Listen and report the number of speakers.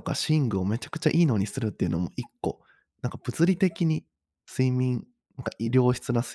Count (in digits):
1